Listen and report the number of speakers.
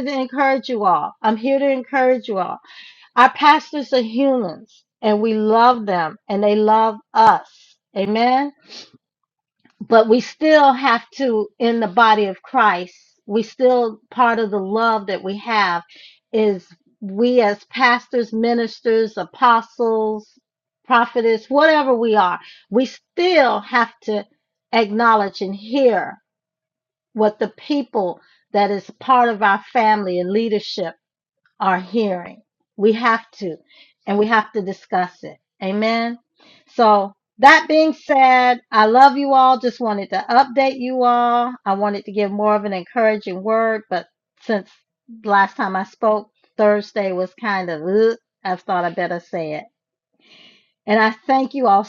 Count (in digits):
1